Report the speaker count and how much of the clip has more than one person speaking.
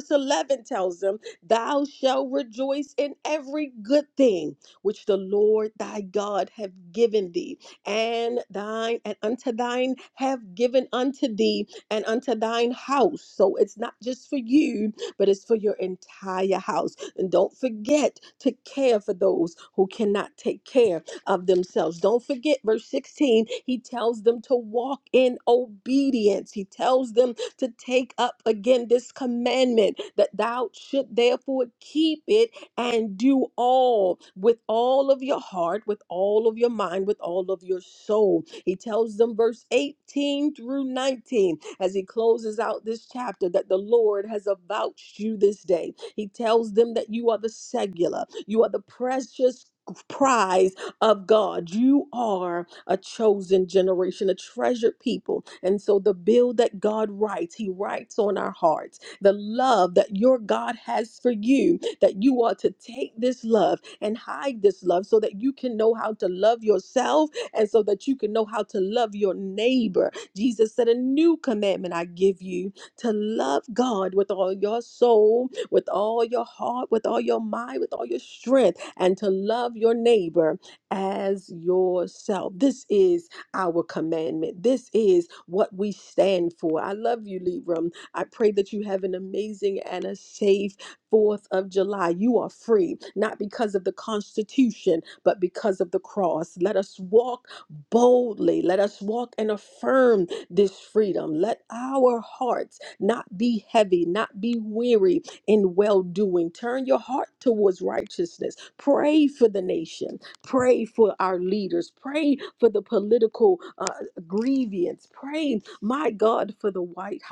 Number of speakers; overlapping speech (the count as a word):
one, no overlap